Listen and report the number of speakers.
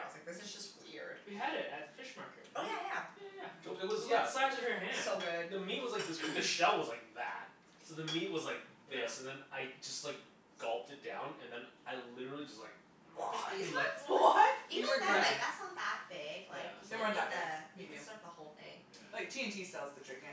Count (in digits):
4